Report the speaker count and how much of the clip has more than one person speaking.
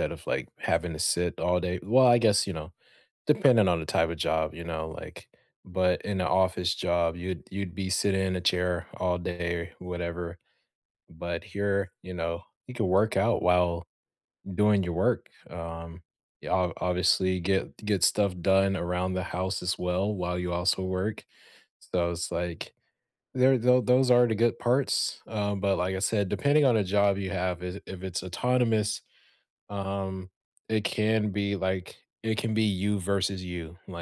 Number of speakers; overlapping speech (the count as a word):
one, no overlap